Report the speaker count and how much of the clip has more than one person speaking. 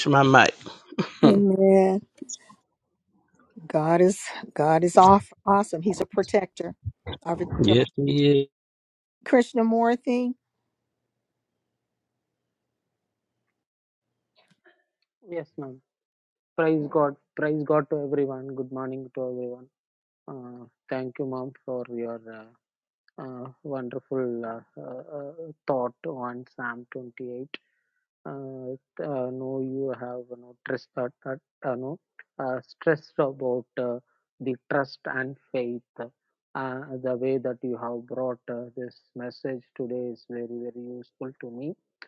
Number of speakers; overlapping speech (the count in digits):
3, about 1%